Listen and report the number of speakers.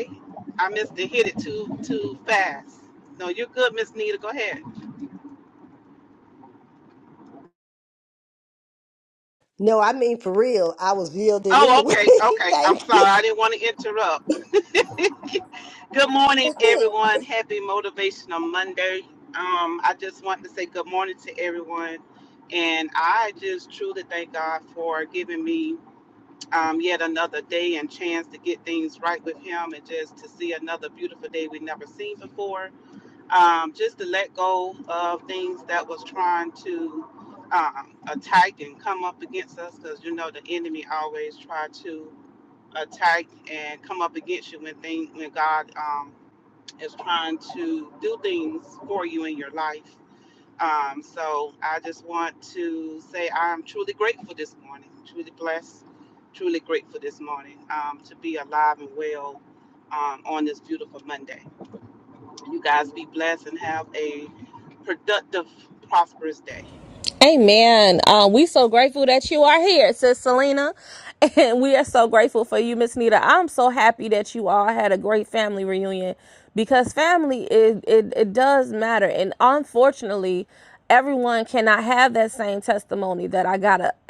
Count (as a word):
three